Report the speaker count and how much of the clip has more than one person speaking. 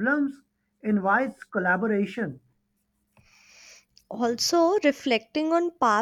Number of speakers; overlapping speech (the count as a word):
two, no overlap